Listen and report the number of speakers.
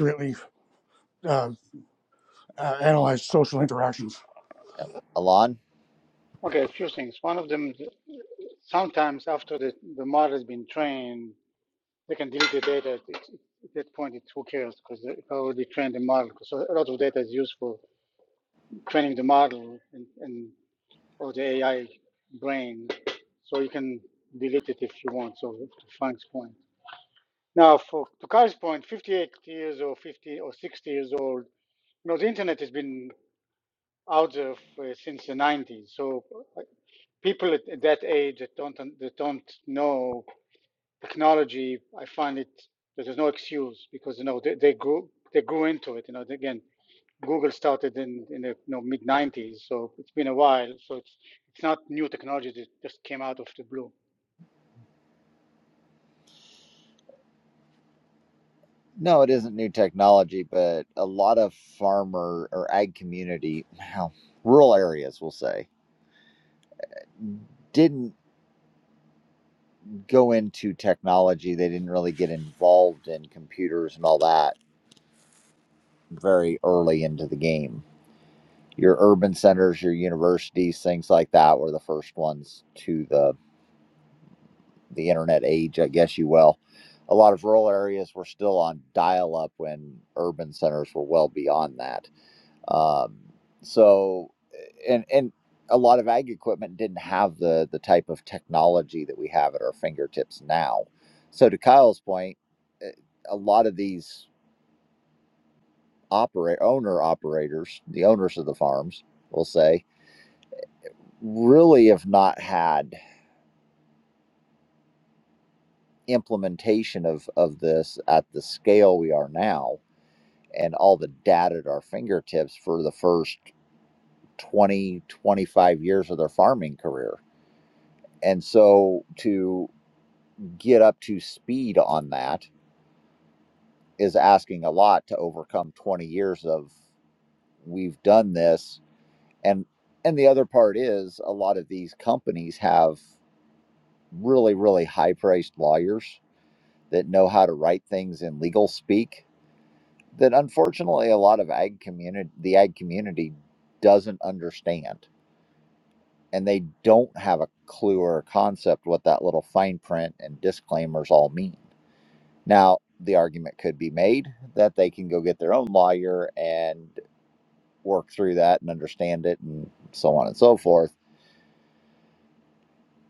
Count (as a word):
three